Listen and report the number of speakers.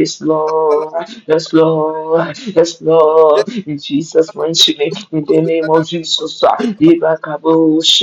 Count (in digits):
1